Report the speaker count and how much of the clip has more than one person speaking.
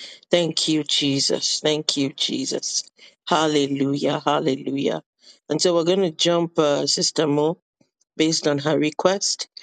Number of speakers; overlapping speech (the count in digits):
1, no overlap